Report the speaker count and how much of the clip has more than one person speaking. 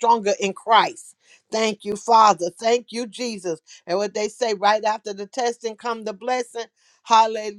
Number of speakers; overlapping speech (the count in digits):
1, no overlap